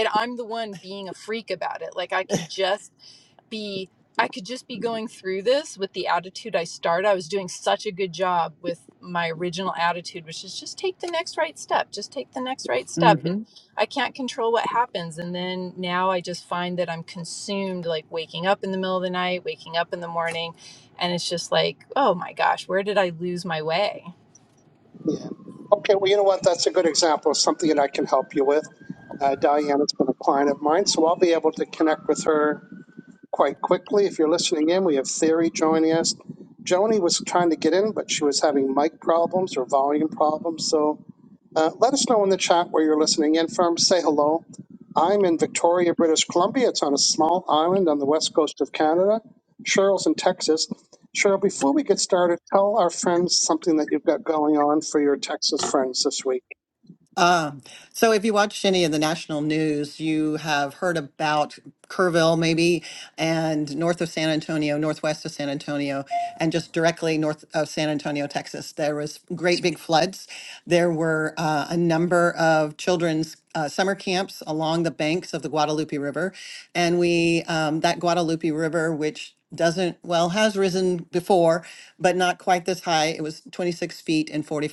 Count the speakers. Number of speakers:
3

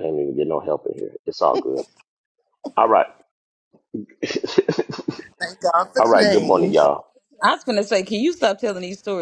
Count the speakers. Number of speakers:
3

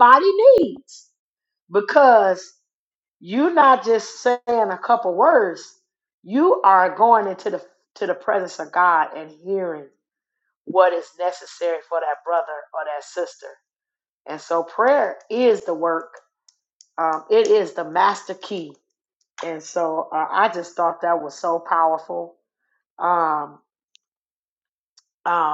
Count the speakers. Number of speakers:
1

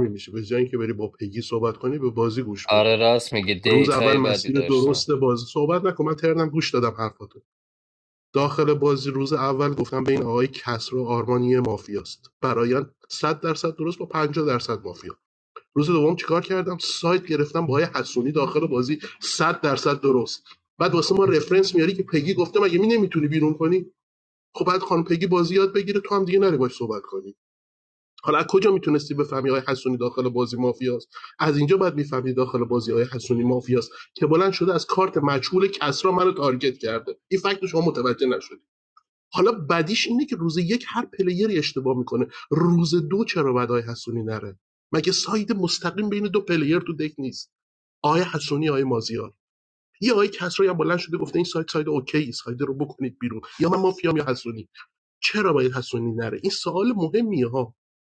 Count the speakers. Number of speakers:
2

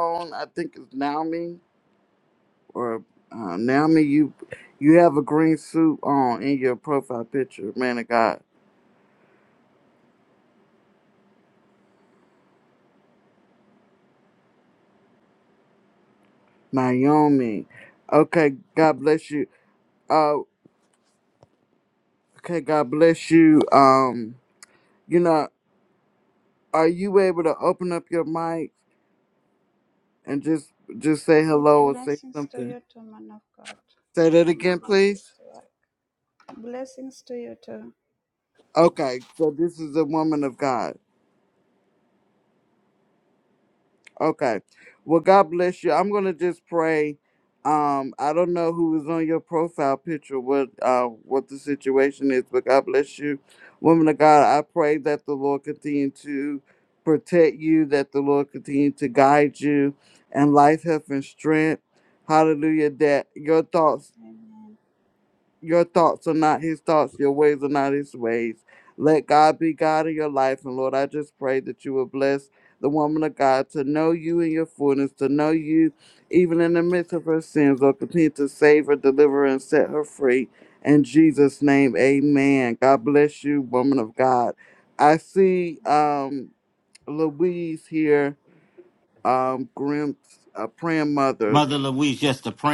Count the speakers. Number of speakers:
3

